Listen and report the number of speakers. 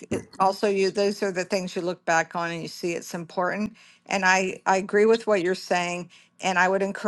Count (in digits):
1